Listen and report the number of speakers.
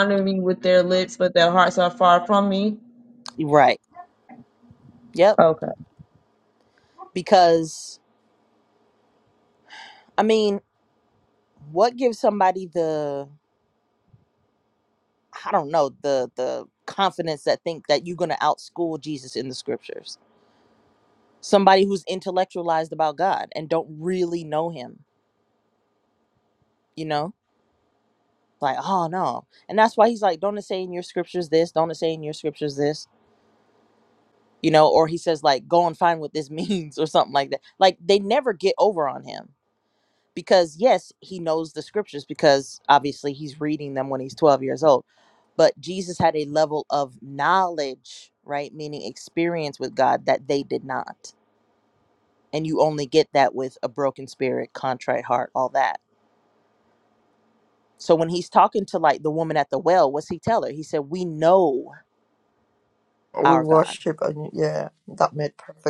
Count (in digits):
3